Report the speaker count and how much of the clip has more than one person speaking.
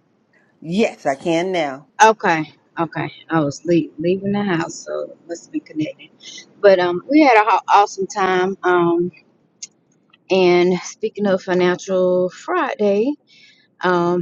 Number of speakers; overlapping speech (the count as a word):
two, no overlap